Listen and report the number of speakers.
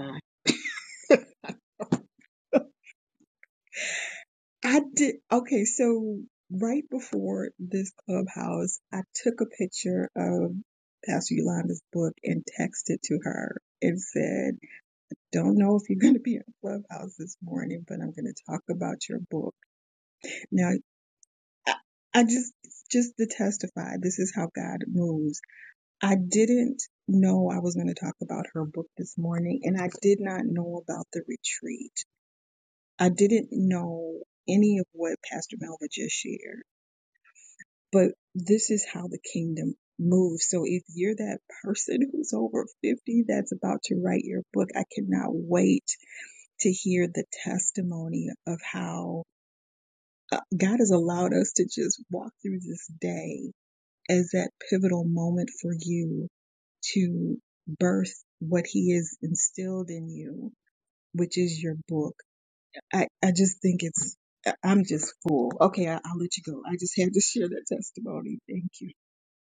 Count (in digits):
1